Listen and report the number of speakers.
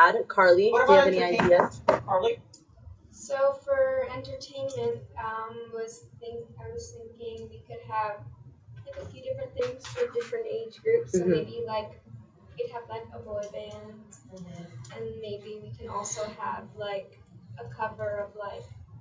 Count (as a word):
three